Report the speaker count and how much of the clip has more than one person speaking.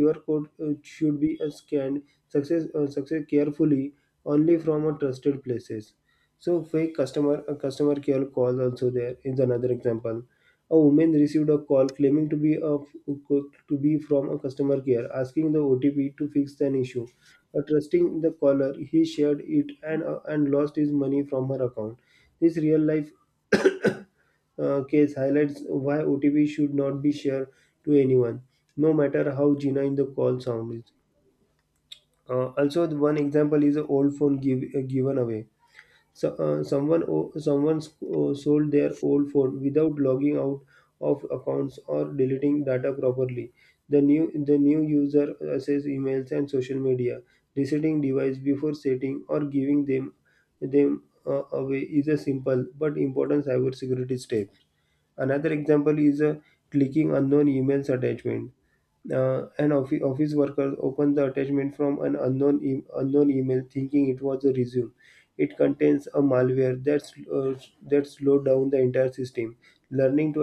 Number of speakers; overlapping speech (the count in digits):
1, no overlap